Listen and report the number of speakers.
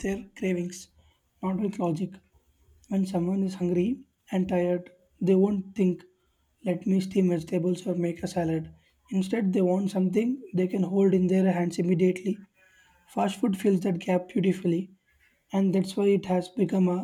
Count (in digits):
1